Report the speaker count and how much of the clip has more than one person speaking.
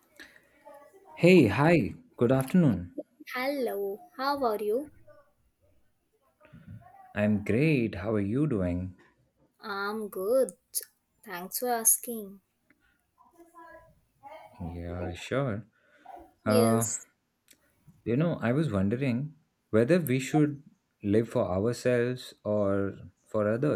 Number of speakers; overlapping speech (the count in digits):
2, about 2%